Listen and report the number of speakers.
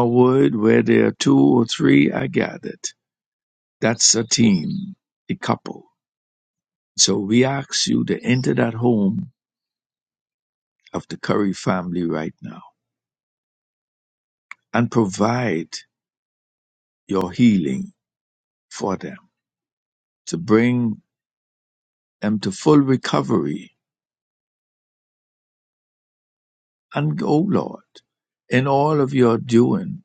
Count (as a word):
one